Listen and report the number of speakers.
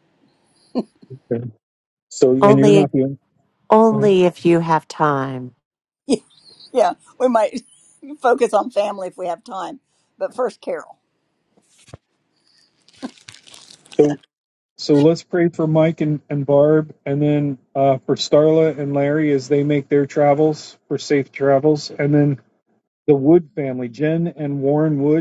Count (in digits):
3